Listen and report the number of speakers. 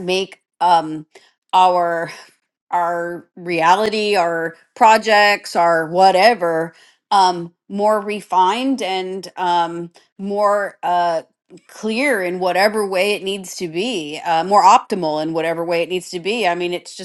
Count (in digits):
1